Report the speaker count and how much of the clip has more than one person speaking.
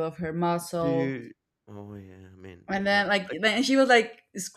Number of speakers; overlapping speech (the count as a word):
two, about 16%